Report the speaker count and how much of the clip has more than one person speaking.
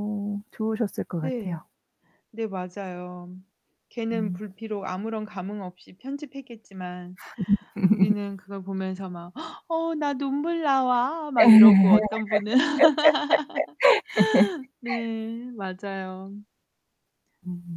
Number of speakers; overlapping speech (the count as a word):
two, about 4%